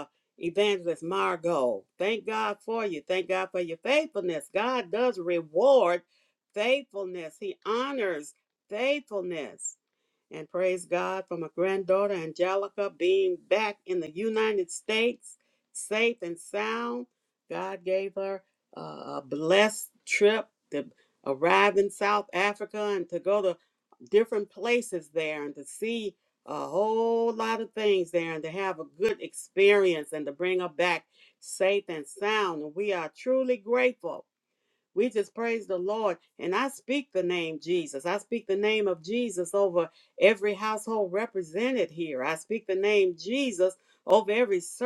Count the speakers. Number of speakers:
one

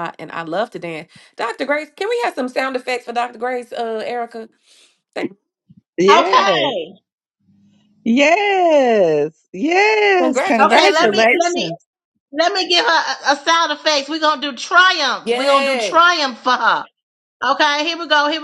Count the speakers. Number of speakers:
three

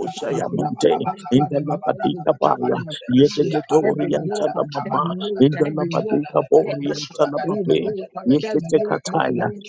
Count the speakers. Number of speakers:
two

